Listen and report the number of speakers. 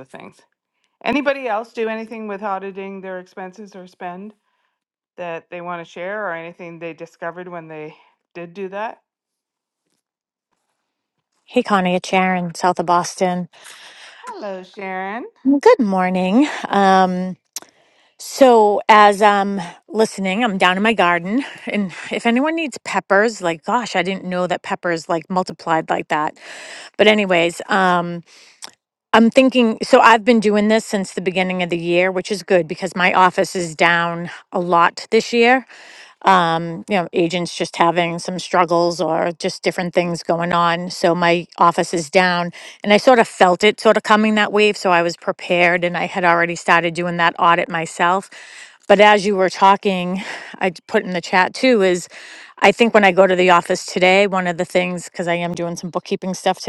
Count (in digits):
2